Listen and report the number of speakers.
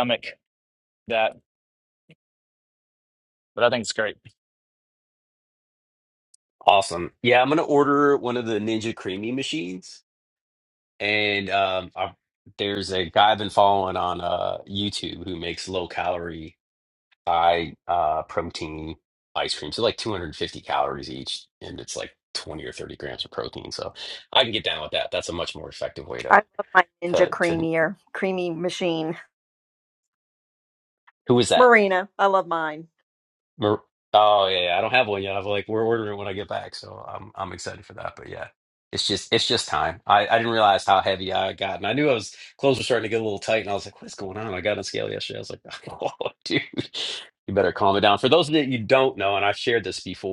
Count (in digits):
3